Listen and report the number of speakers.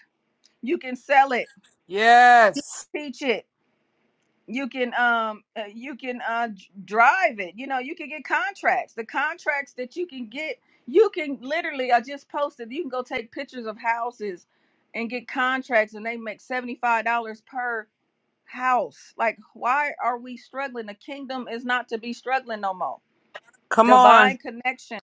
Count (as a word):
two